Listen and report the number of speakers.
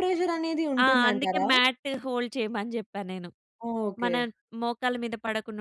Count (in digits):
2